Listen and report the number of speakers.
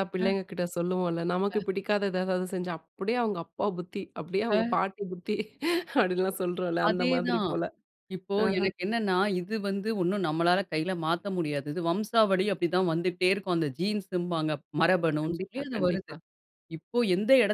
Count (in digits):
2